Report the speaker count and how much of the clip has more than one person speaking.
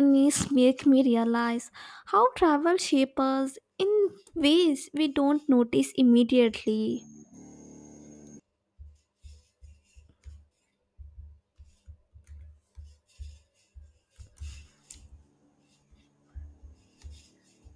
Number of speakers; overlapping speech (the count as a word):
one, no overlap